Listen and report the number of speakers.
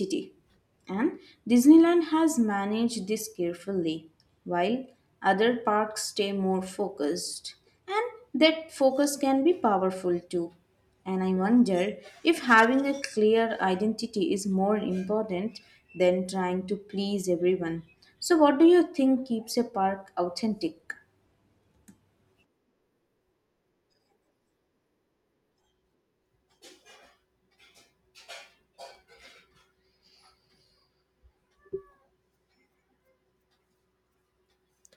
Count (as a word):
one